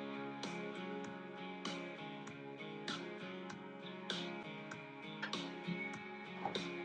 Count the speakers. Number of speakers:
zero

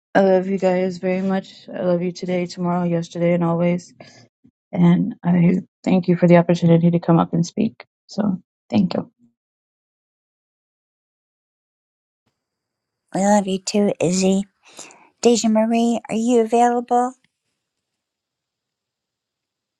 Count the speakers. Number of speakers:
two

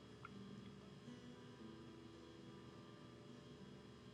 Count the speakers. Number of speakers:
zero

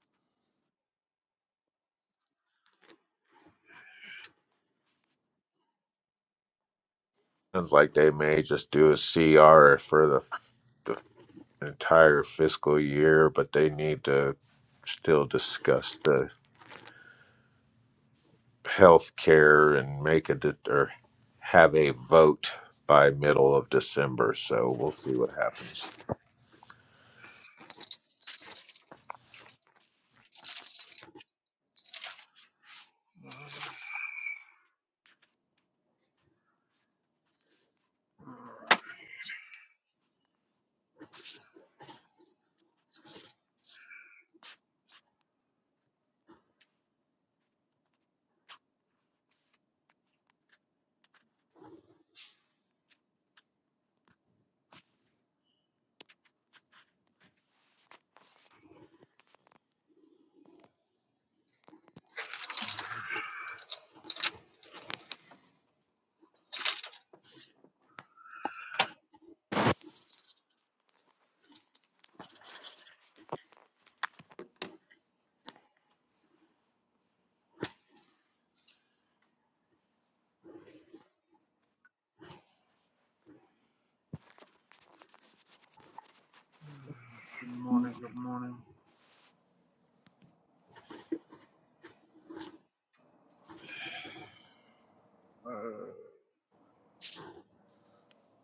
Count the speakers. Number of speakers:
two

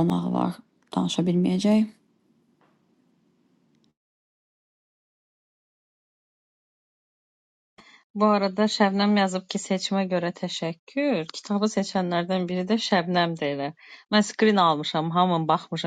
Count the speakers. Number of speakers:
two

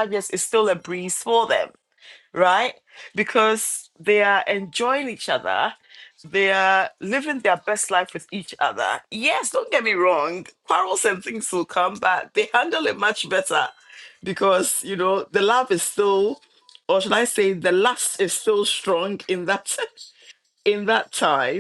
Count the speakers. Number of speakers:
one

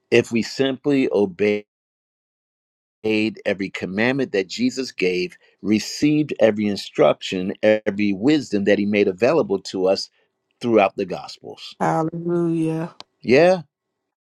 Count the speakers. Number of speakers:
two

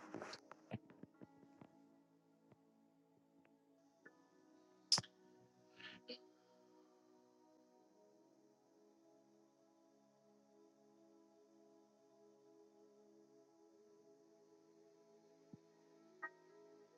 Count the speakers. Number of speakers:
zero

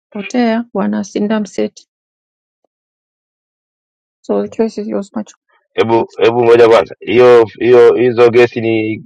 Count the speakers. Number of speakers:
two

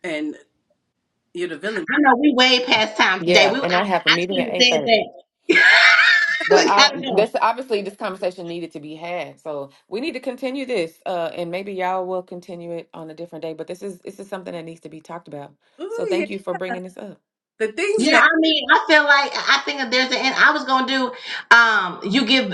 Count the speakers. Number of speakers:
three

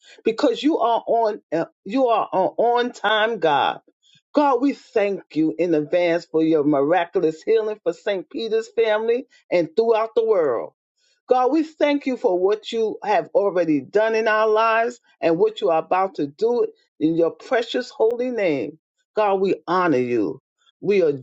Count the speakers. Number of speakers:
one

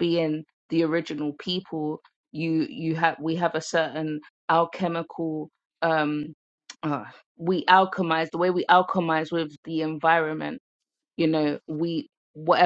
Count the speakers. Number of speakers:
one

